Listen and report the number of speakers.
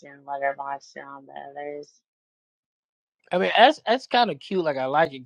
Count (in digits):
2